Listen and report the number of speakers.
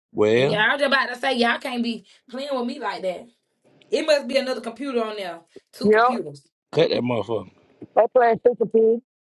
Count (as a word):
three